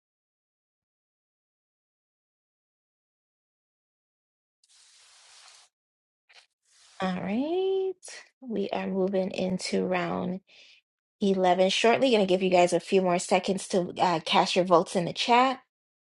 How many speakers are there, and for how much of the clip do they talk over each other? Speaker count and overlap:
1, no overlap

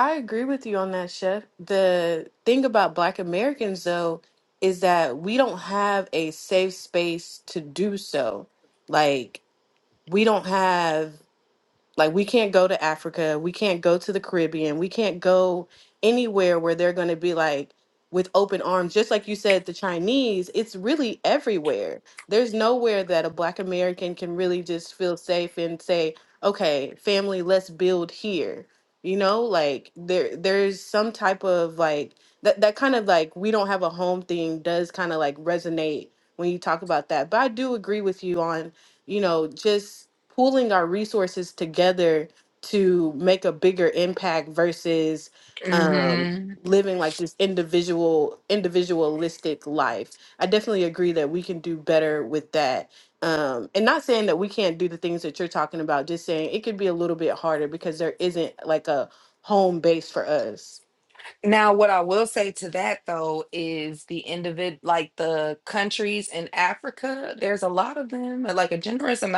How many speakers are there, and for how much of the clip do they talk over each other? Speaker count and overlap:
2, about 1%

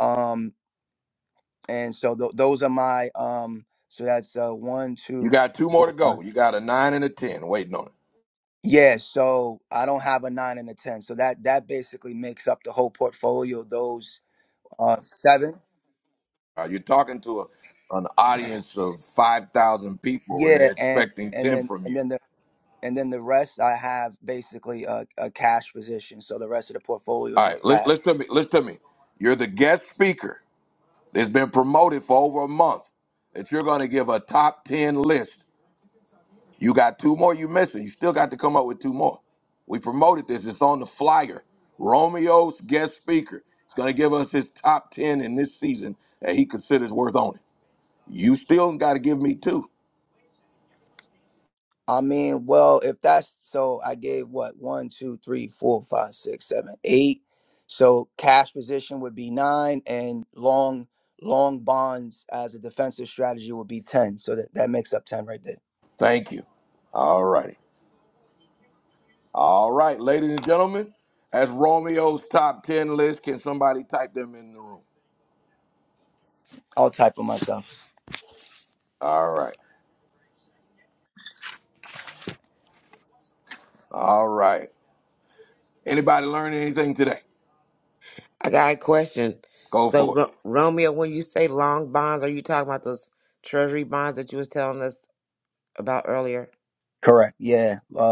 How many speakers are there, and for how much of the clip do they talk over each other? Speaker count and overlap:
3, about 3%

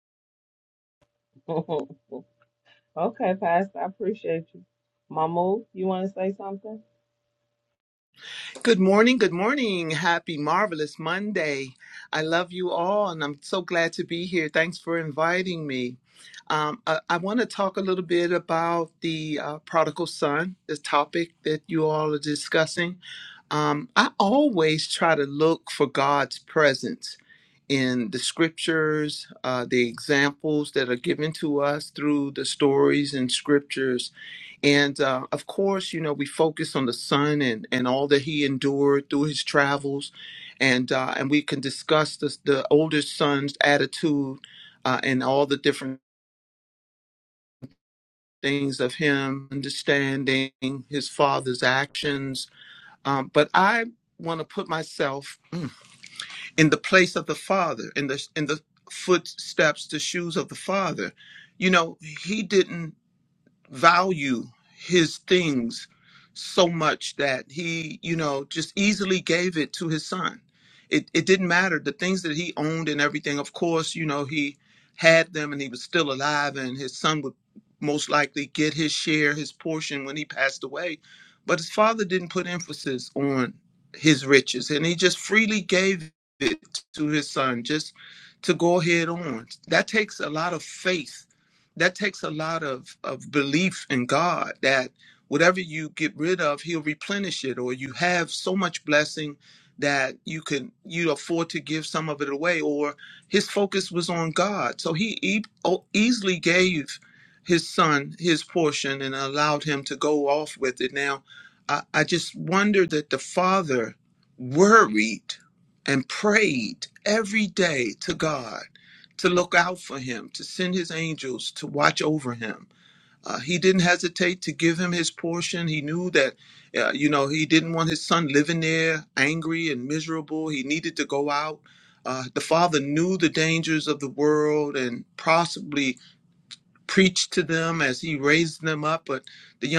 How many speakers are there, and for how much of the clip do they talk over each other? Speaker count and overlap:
2, no overlap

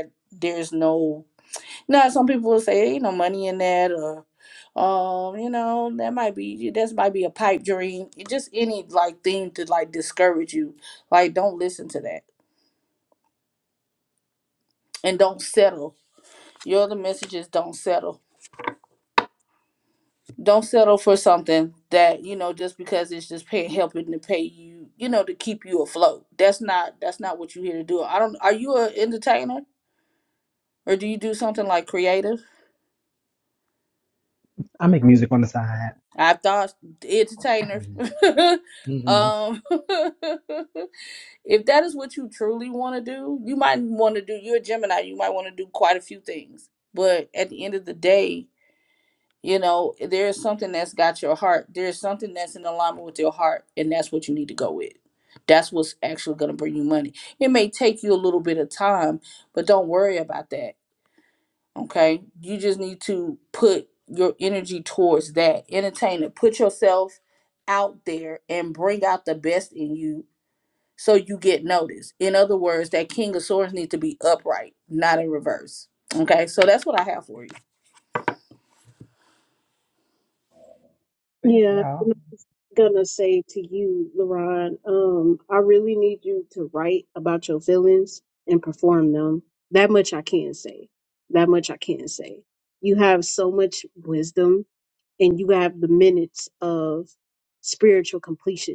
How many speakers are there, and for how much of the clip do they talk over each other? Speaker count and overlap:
3, about 1%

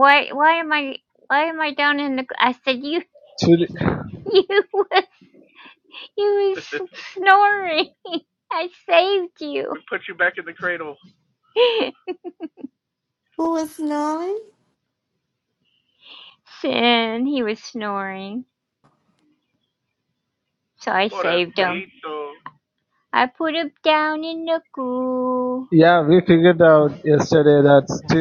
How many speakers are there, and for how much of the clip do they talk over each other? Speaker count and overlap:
4, about 1%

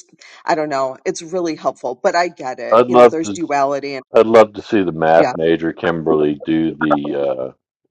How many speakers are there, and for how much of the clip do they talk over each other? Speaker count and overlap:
2, about 11%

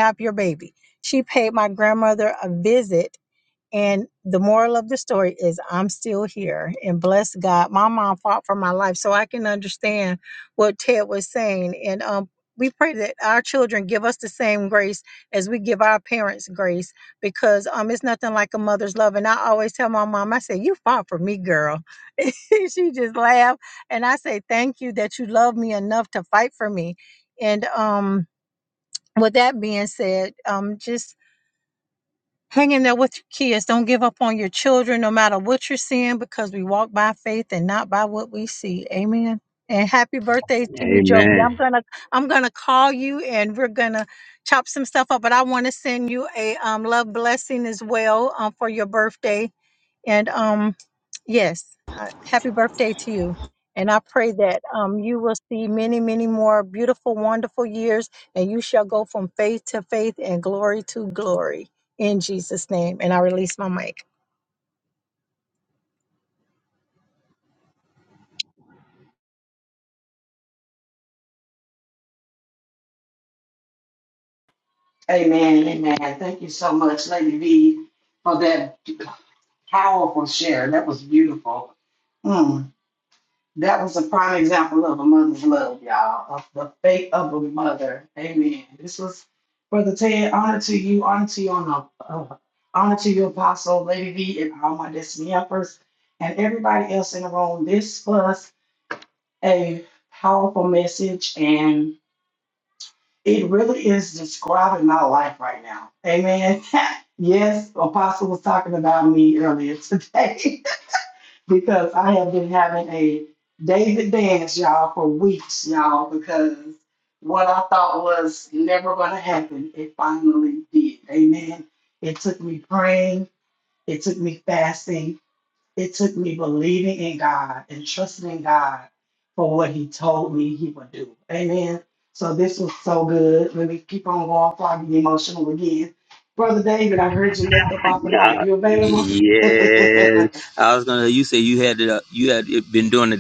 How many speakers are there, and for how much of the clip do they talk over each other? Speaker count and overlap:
3, about 1%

